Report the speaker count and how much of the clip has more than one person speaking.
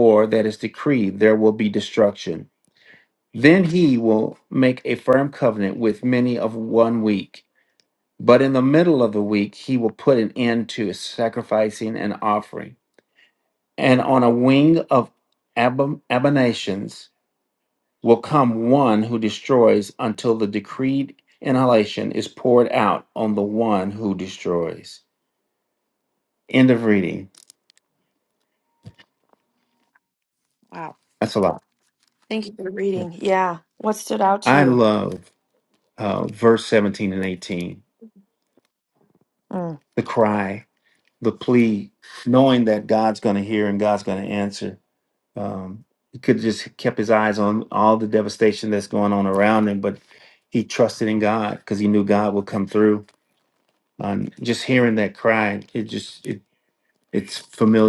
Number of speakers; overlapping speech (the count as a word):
two, about 1%